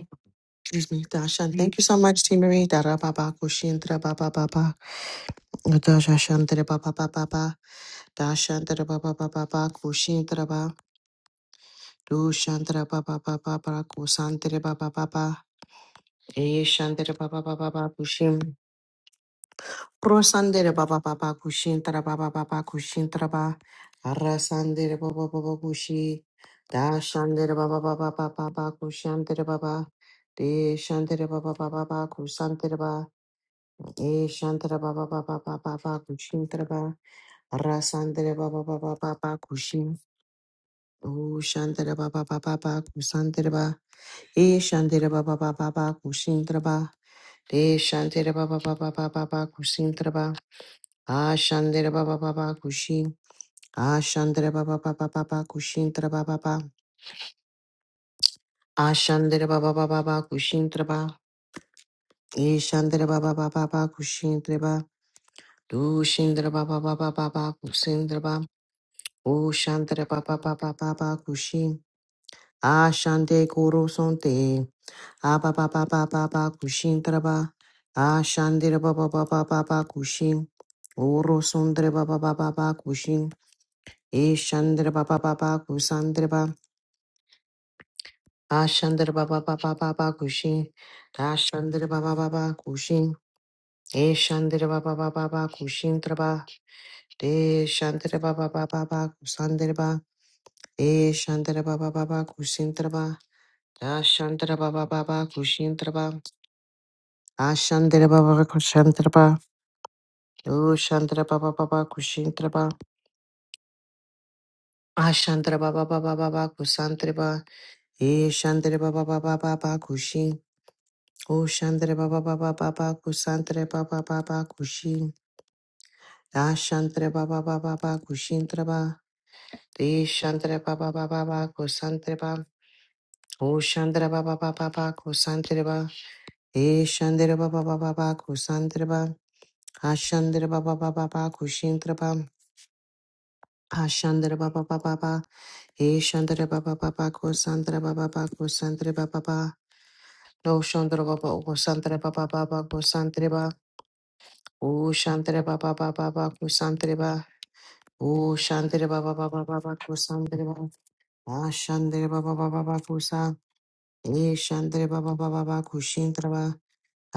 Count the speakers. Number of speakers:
1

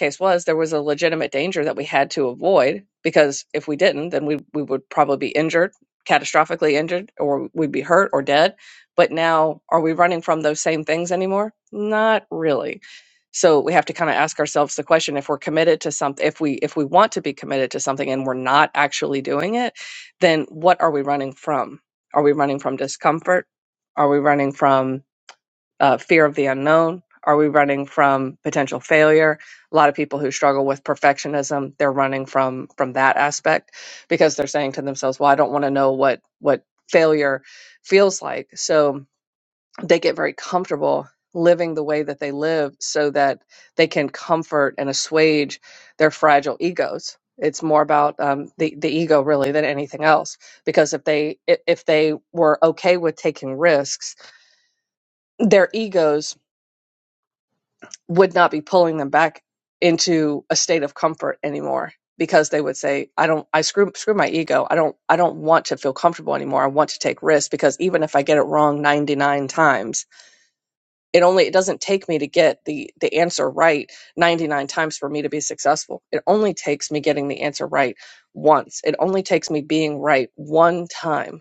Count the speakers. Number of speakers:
1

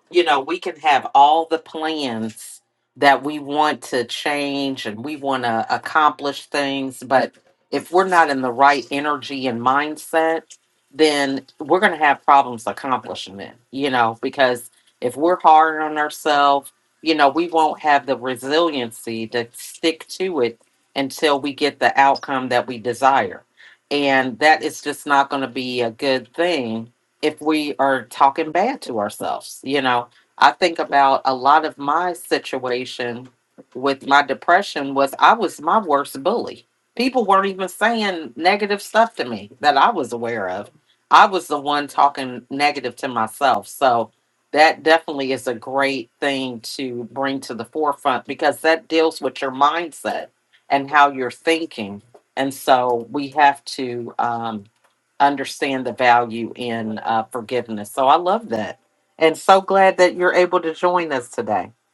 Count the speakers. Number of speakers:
1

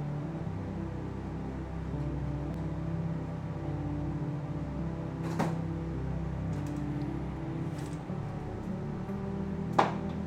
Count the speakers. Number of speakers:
0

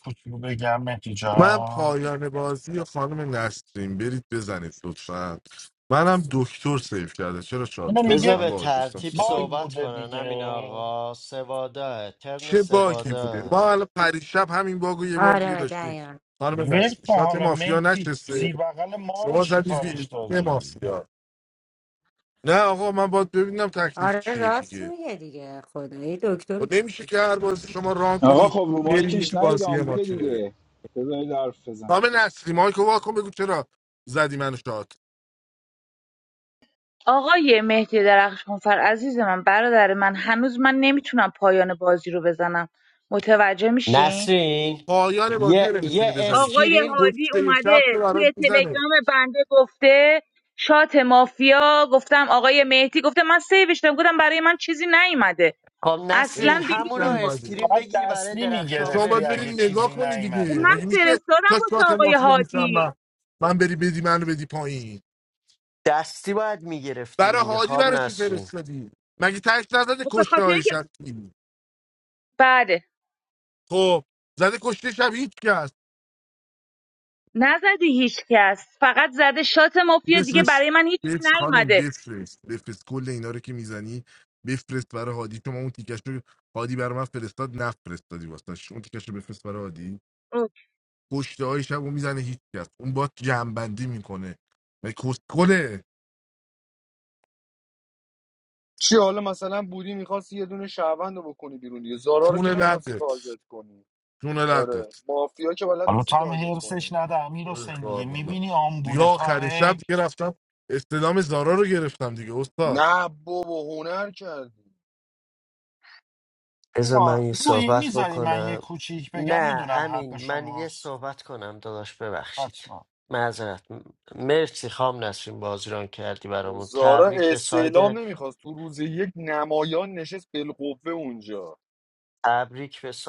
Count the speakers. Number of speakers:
7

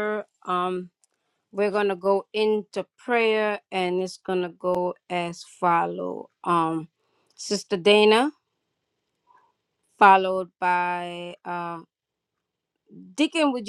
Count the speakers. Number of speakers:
1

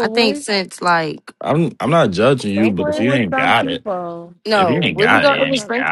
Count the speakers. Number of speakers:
3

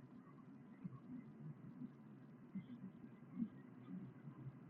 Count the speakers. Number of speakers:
0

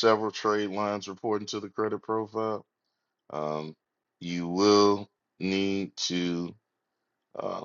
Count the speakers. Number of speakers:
1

